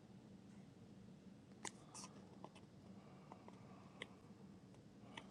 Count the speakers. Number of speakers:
zero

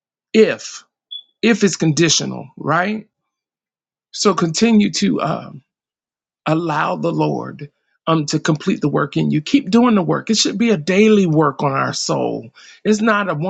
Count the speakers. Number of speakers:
one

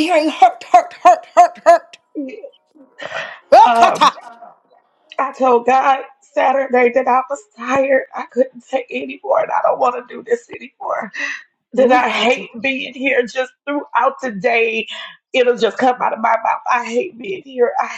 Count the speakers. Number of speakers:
two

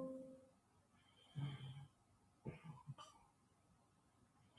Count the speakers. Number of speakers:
zero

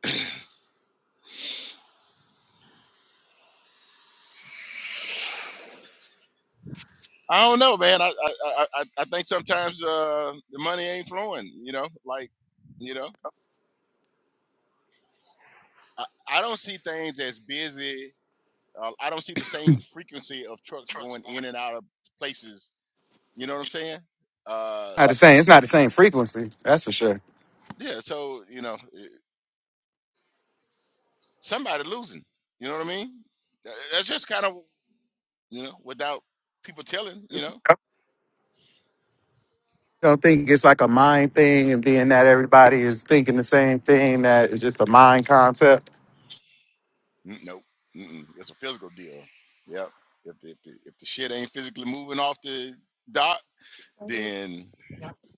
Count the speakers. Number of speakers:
two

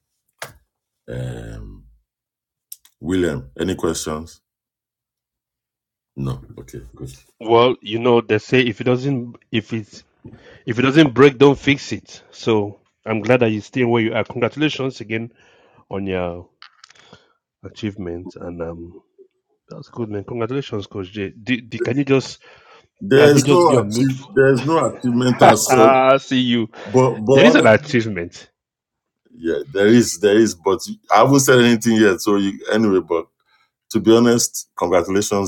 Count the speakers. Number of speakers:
two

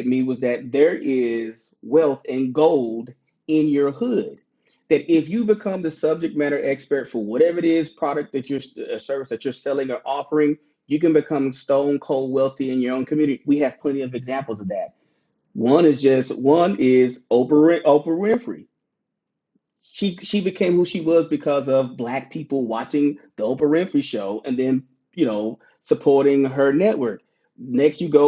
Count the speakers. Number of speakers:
one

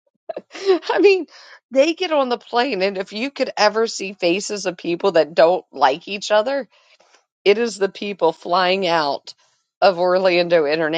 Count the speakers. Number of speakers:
one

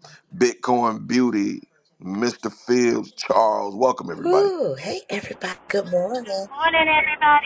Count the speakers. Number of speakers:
three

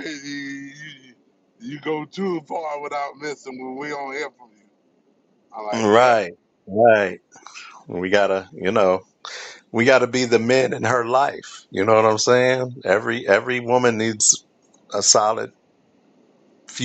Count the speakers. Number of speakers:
two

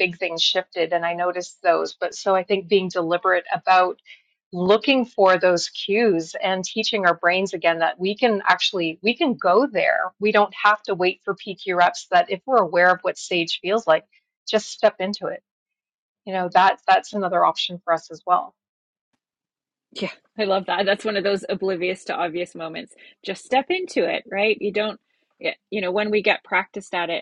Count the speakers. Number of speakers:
two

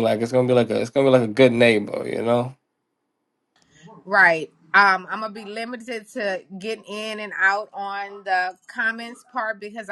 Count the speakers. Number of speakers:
two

